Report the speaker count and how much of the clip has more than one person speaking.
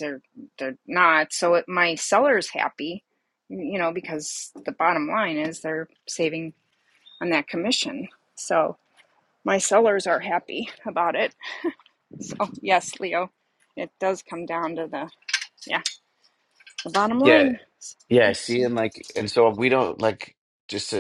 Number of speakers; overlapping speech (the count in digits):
2, about 2%